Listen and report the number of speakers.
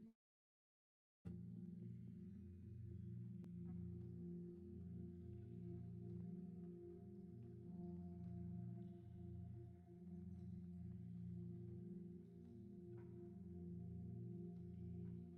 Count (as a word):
zero